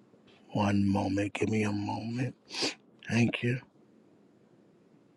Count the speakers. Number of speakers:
one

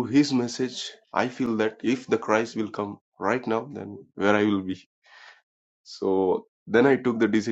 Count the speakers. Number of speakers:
one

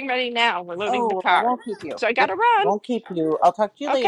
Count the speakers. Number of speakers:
two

